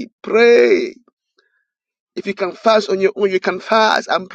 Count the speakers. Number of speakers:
1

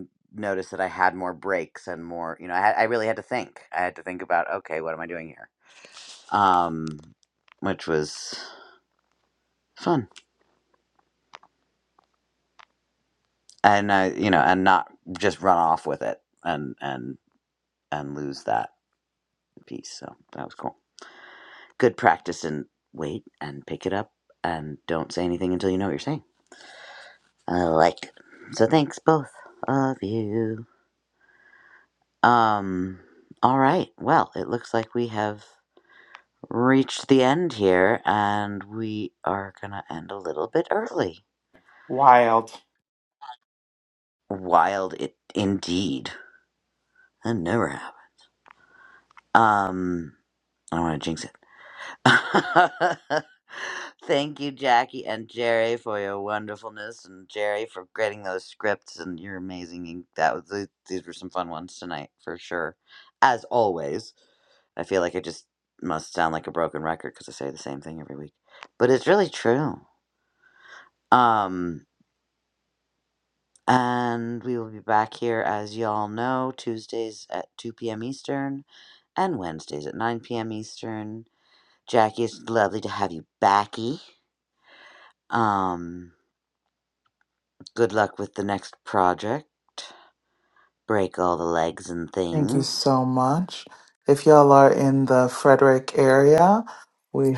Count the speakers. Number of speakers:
2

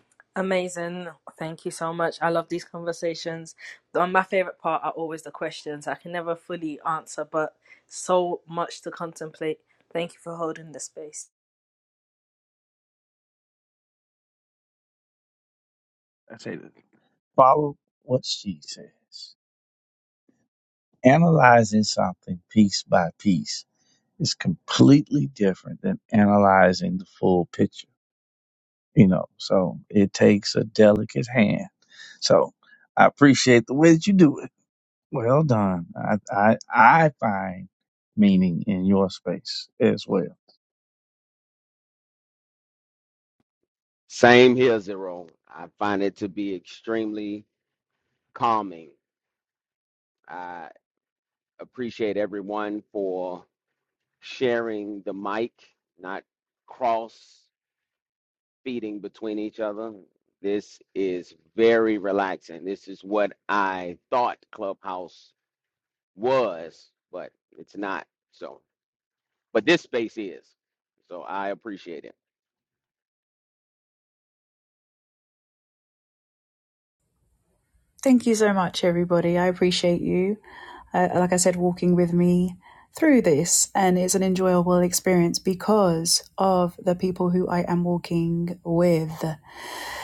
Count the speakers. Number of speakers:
4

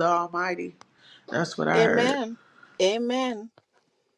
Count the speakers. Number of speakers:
2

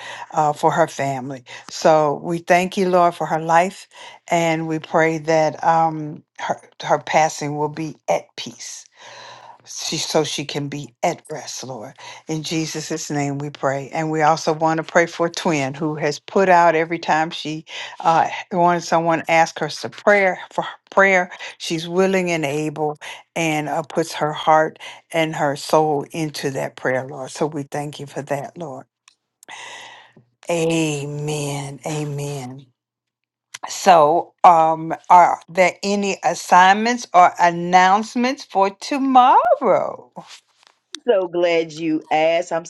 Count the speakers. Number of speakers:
2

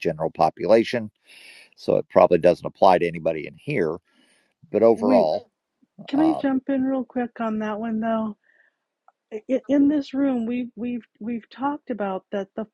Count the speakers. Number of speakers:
2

